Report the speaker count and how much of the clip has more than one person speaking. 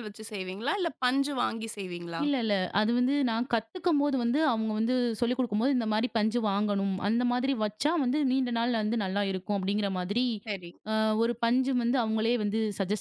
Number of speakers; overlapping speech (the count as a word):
two, about 1%